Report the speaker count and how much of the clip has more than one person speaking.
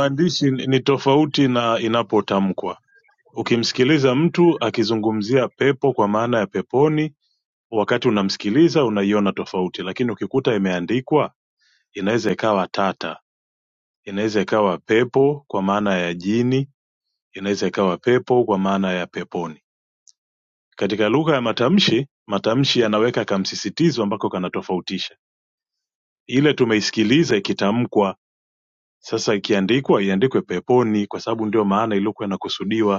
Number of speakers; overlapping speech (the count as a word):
one, no overlap